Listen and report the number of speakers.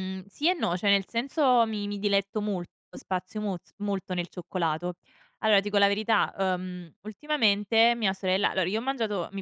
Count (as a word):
one